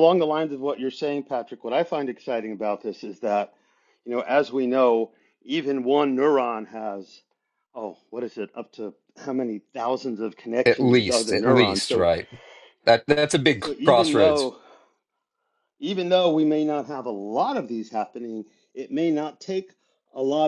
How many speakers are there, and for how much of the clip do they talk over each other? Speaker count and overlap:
two, about 11%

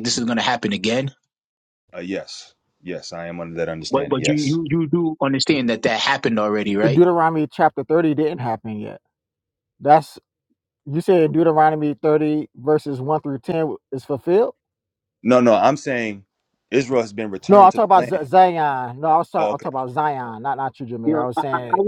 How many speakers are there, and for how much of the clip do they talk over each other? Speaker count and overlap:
three, about 12%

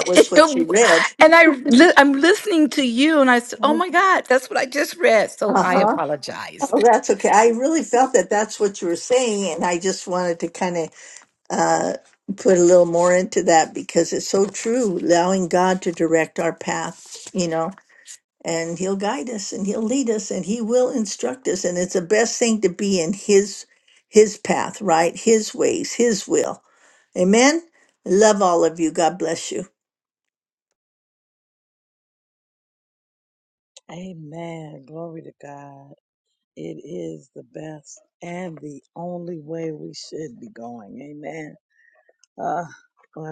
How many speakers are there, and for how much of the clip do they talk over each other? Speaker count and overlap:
three, about 2%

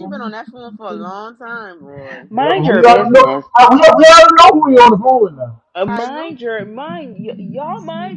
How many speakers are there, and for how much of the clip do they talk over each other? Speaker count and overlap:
three, about 19%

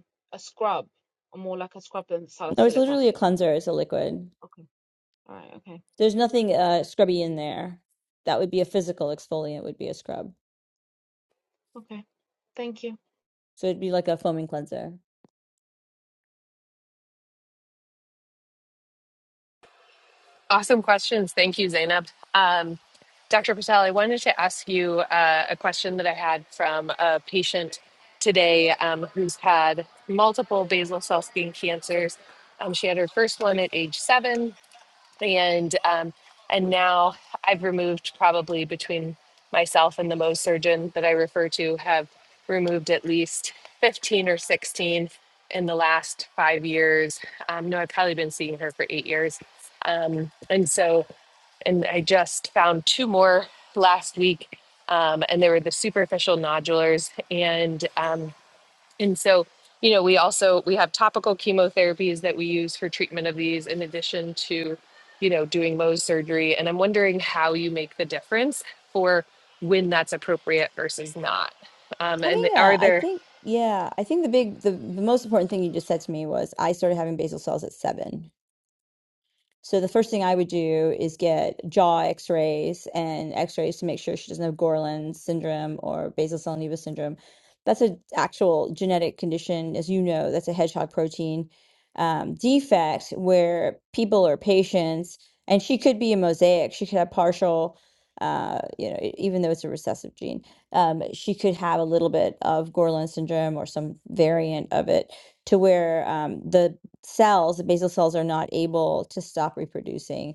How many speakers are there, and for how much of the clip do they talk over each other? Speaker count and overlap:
three, about 1%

